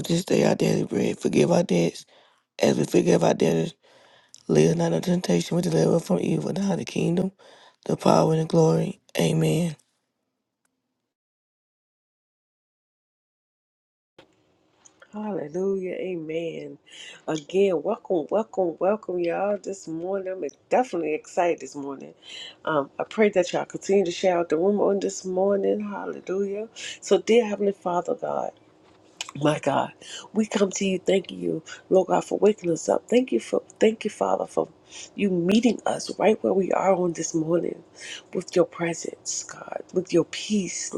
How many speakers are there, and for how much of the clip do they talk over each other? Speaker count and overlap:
two, no overlap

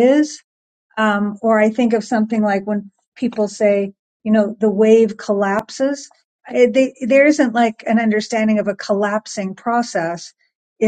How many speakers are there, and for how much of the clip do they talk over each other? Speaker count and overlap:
one, no overlap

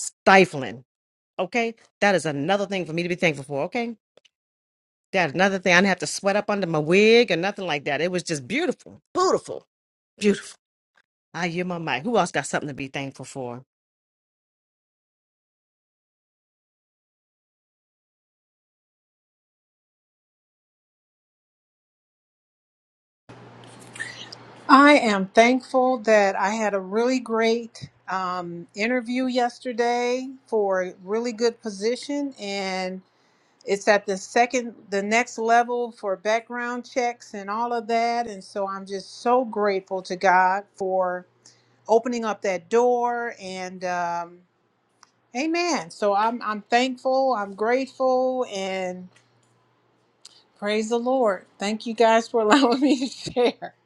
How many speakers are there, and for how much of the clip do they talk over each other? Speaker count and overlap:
two, no overlap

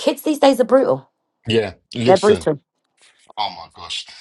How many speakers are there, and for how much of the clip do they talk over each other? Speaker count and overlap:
two, about 9%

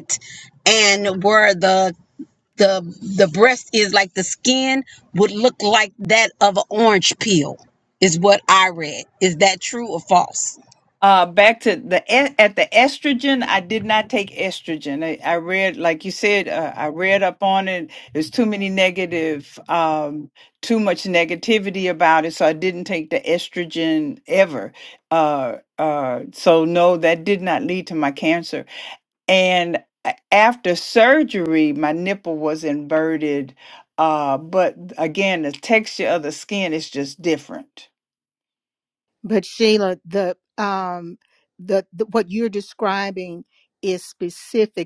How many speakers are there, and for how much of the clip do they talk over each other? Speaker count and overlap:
three, no overlap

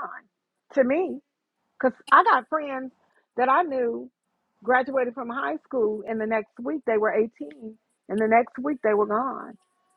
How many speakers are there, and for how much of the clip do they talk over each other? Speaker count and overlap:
one, no overlap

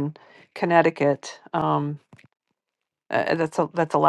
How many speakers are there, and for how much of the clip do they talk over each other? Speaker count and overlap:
one, no overlap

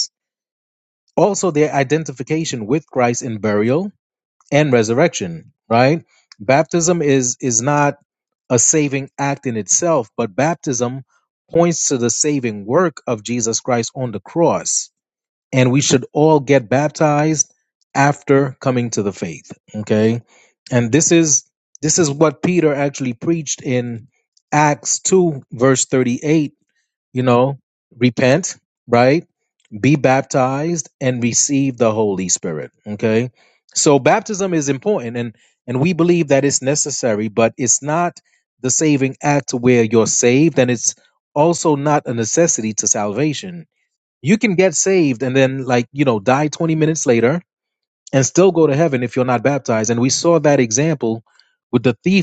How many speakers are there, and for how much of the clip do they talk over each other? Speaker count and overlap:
one, no overlap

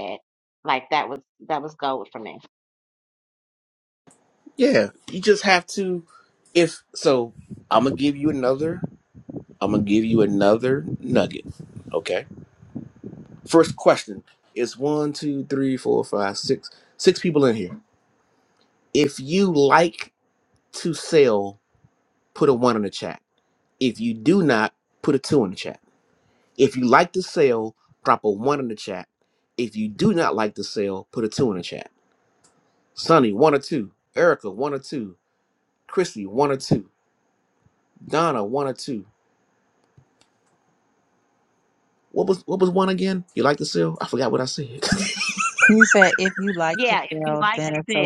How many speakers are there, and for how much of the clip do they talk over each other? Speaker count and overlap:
three, about 3%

